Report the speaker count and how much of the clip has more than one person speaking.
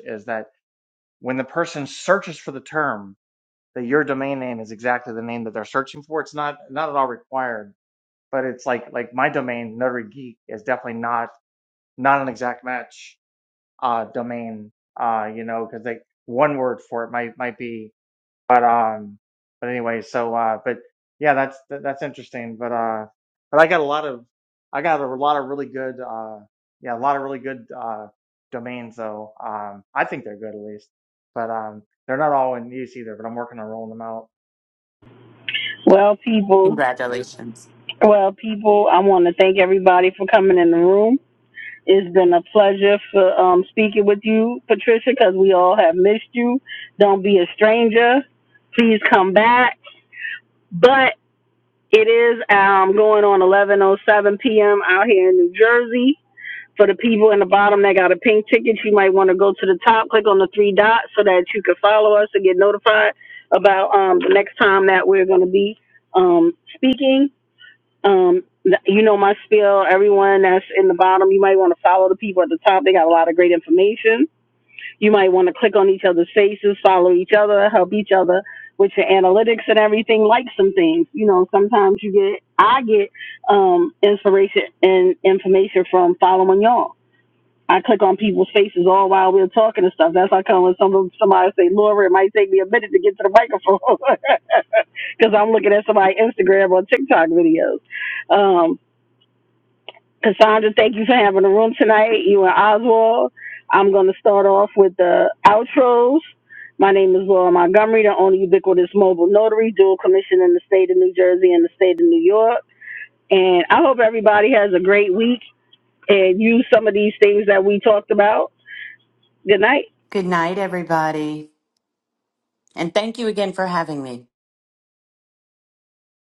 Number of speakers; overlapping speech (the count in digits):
3, under 1%